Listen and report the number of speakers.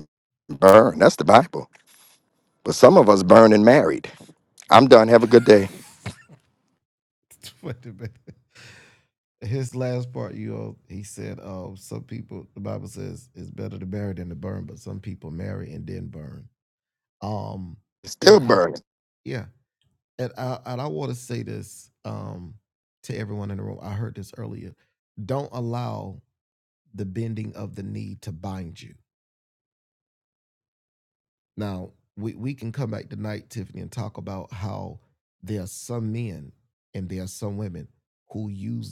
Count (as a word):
two